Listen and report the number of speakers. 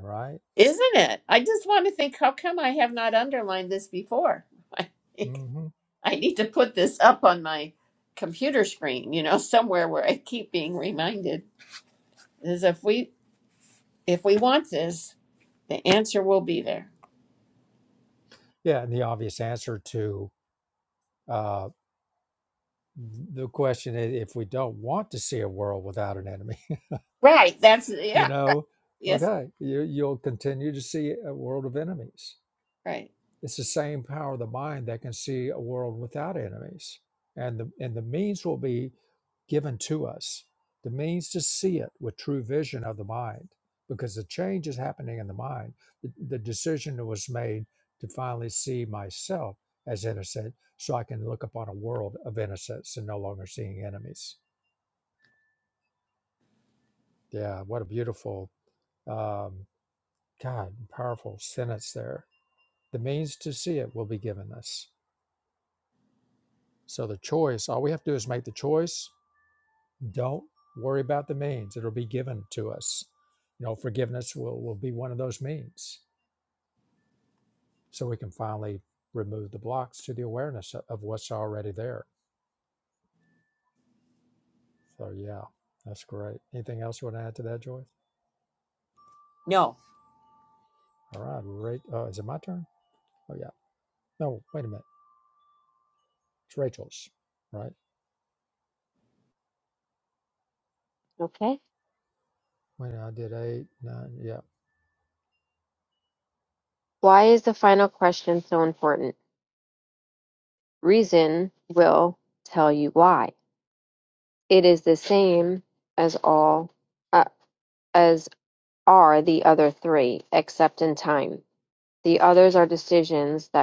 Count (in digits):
3